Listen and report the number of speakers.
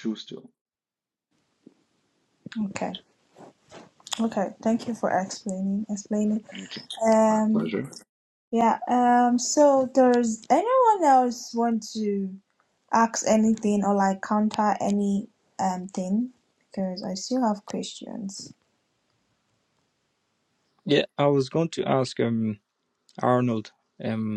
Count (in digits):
3